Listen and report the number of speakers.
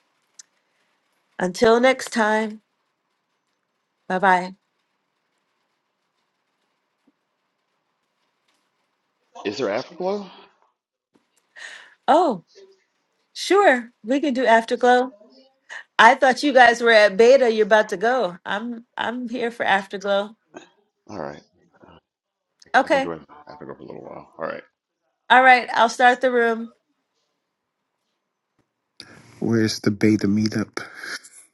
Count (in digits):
3